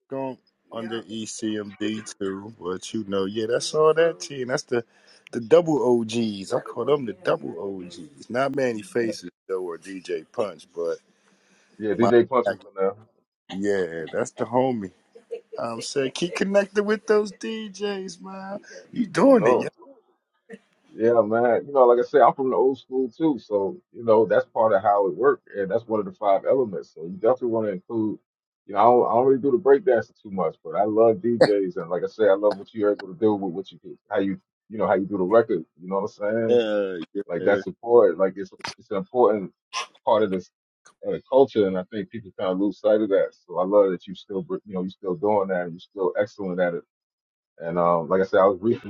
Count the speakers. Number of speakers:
2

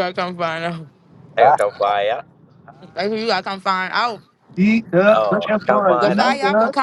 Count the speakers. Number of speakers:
3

